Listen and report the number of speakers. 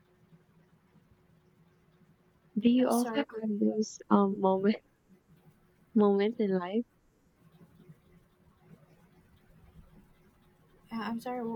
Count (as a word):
two